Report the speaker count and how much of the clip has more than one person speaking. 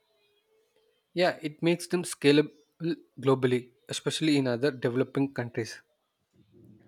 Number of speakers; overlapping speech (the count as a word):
one, no overlap